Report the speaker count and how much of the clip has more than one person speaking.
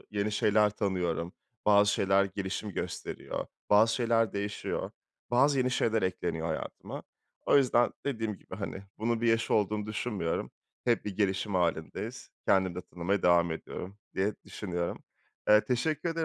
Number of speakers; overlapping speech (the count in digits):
1, no overlap